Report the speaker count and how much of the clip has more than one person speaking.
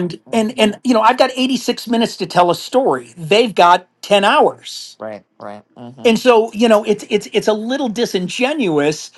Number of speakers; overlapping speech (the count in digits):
2, about 9%